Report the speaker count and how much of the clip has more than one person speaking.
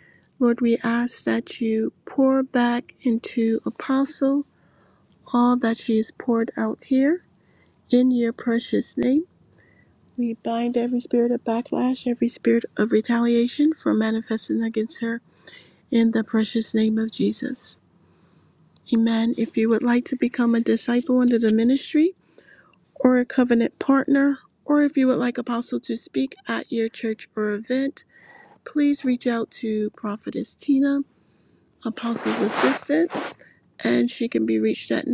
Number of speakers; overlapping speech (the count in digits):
1, no overlap